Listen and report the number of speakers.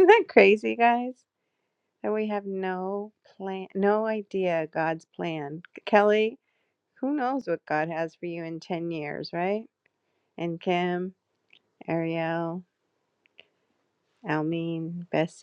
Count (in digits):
1